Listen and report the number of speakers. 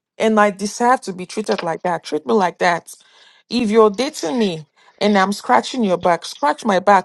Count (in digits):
1